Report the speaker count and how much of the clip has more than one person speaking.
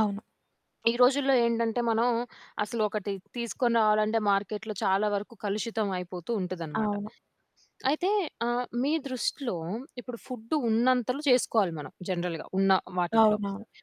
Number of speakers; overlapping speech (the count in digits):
2, about 3%